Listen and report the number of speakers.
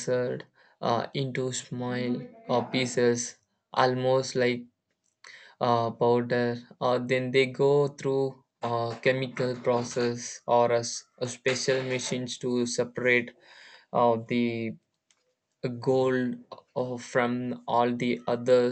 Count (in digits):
1